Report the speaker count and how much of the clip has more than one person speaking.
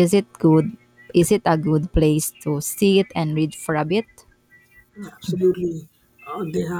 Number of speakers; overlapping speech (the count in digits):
2, no overlap